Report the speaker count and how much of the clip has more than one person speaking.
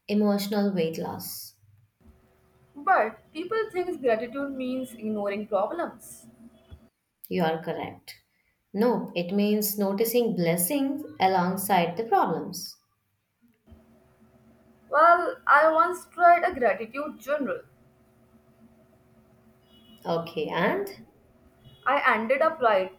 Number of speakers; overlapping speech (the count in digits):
2, no overlap